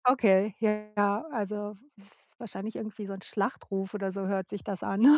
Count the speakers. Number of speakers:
one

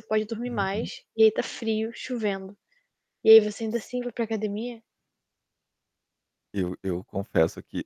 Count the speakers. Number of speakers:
two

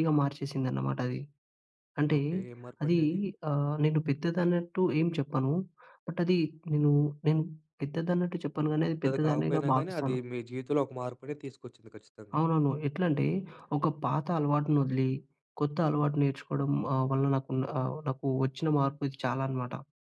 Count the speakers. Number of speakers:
two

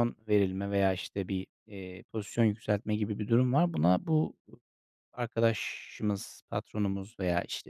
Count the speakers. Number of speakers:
one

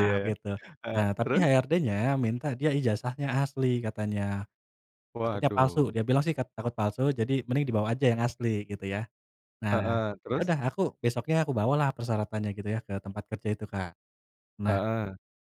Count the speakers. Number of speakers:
two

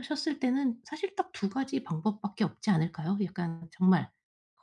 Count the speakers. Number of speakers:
one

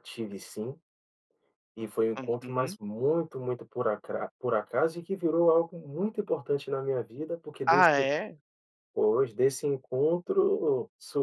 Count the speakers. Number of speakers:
two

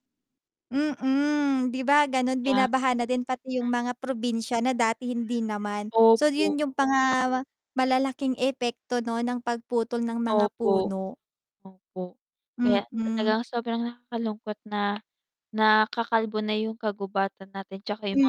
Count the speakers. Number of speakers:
two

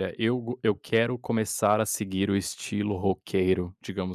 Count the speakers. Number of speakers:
one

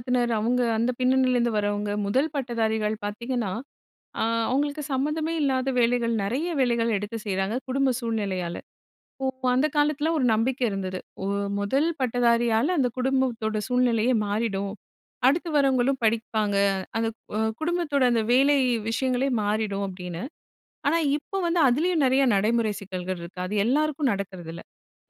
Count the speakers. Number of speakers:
one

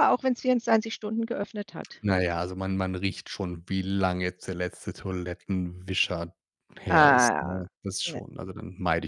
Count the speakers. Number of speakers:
two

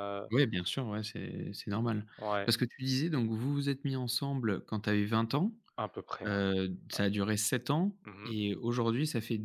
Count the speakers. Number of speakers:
two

